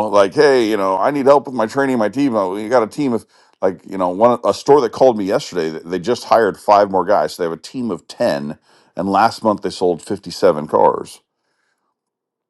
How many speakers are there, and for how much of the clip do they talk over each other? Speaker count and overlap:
1, no overlap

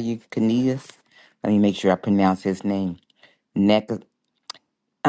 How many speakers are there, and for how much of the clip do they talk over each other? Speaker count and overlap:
1, no overlap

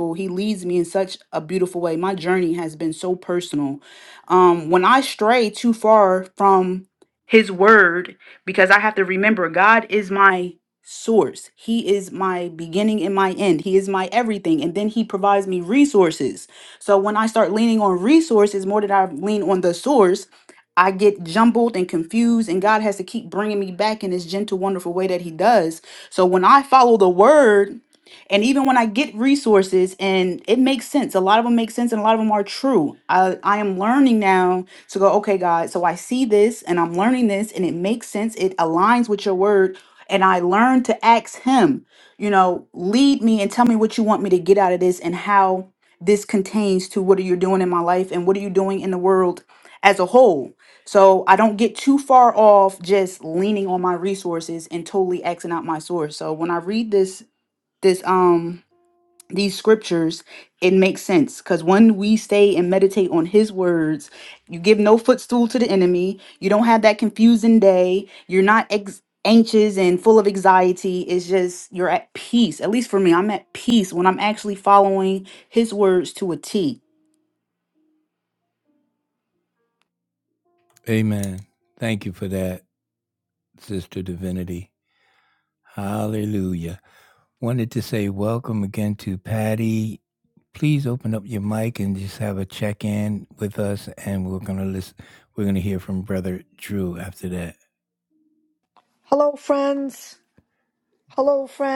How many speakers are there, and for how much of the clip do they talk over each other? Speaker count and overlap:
3, no overlap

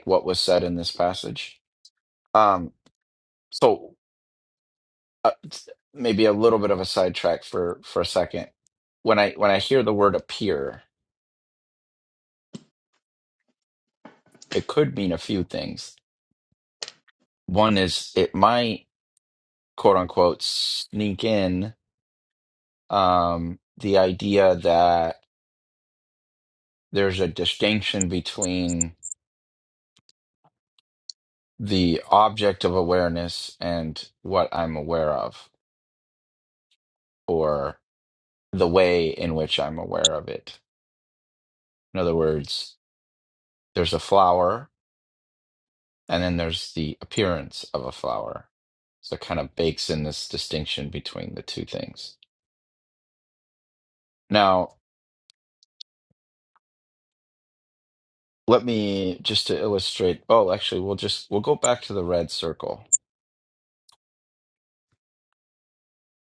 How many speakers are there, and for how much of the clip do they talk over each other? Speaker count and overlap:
1, no overlap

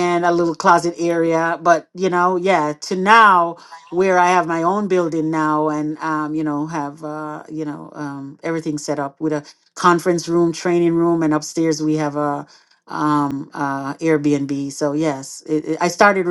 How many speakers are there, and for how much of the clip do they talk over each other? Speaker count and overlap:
1, no overlap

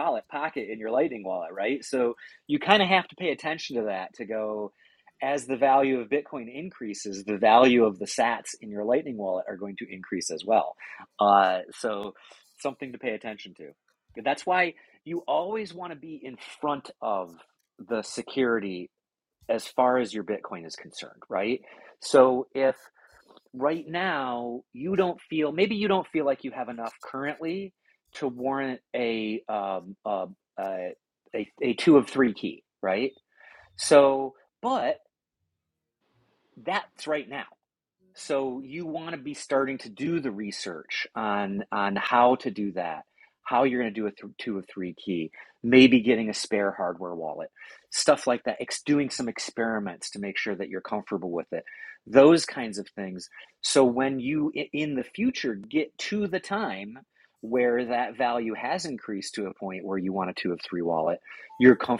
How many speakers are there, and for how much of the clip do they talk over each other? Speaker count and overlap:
1, no overlap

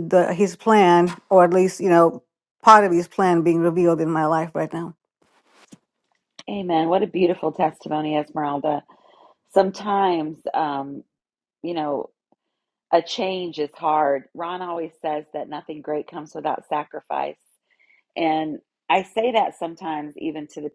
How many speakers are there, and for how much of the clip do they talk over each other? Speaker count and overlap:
2, no overlap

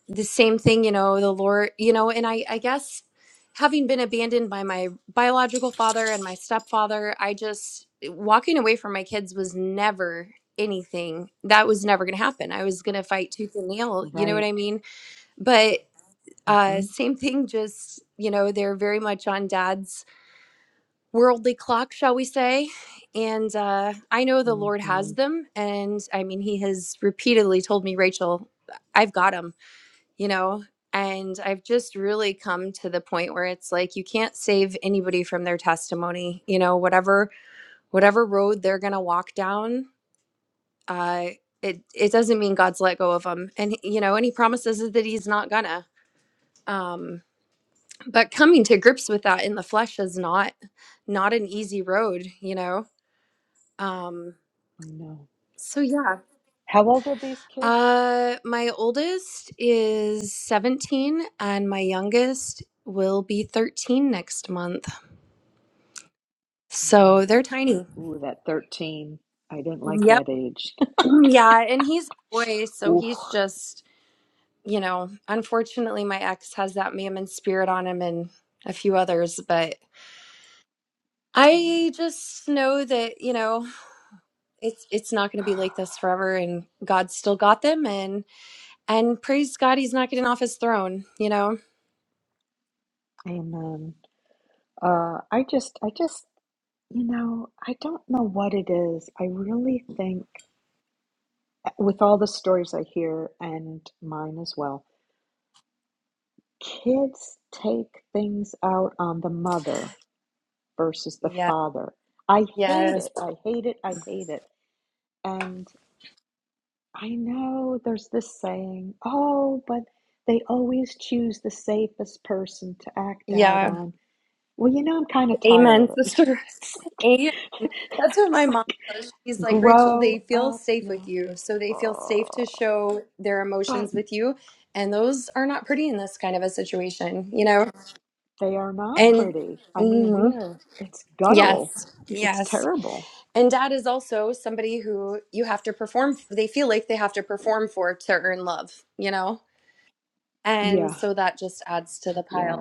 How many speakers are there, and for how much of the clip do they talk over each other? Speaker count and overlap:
2, about 7%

